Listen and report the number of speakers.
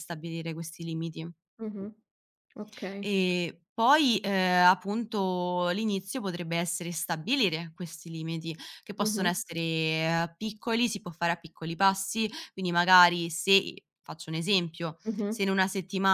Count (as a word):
two